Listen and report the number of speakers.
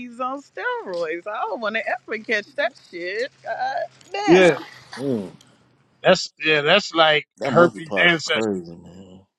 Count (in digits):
3